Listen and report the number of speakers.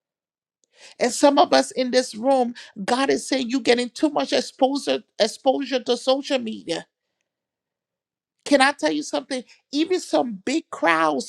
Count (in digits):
1